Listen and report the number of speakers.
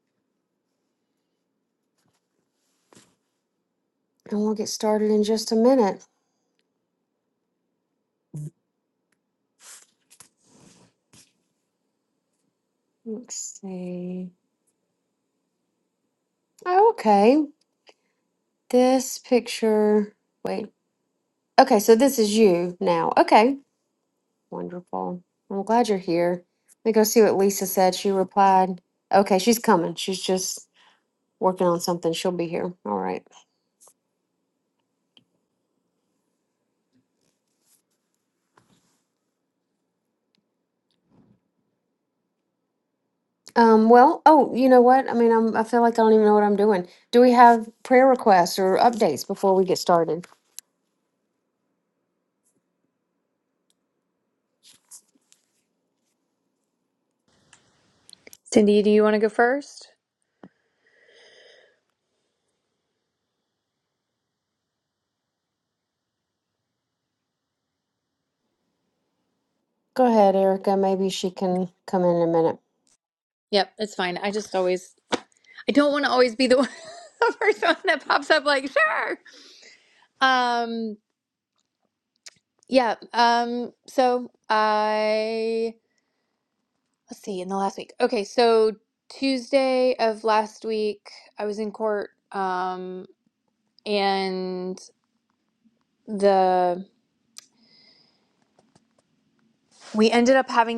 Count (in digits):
2